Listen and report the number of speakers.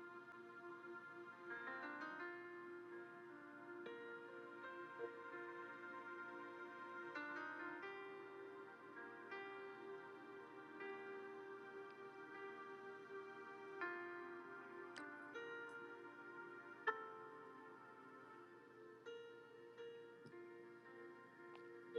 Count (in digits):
0